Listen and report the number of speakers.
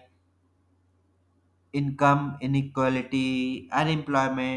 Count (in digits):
1